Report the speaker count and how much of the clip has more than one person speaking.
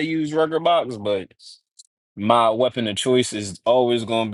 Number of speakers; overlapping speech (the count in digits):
1, no overlap